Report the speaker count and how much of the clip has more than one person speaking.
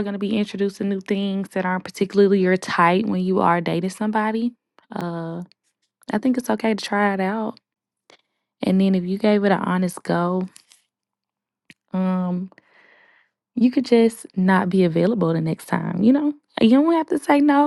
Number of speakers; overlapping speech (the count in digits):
1, no overlap